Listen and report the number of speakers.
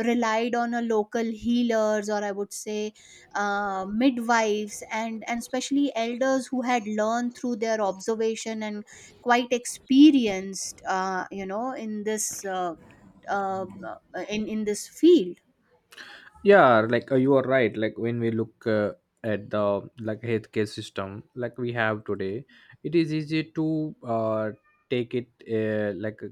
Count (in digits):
2